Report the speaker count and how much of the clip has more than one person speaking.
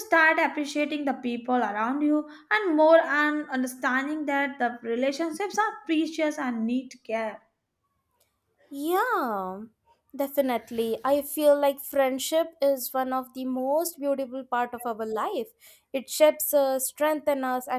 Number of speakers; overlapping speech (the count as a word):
two, no overlap